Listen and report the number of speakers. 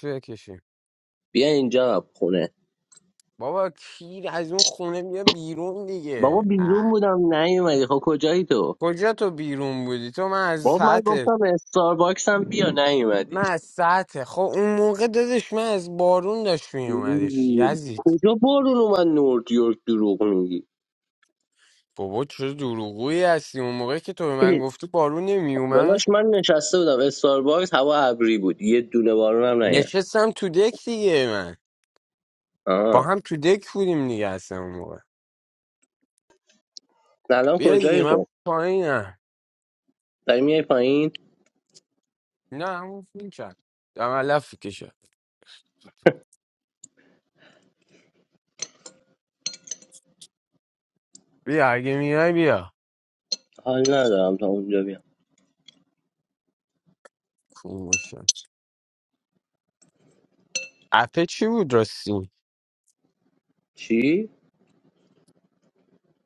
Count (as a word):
two